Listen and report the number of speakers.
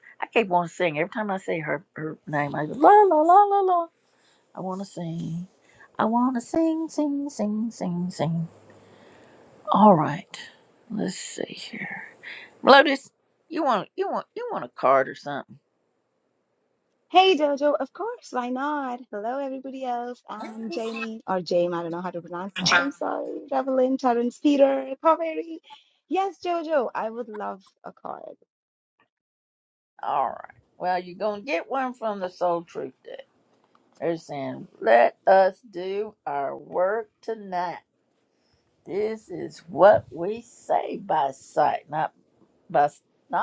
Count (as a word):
two